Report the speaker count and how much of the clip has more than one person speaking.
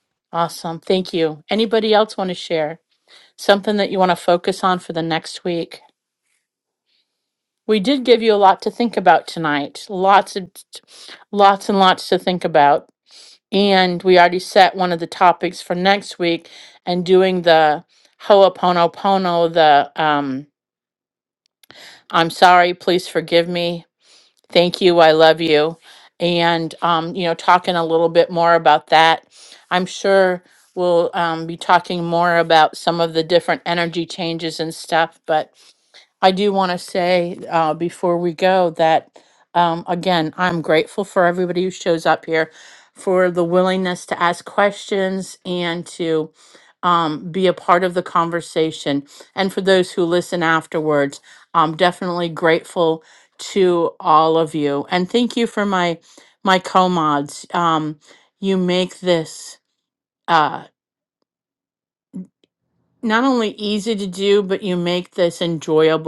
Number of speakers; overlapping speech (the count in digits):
1, no overlap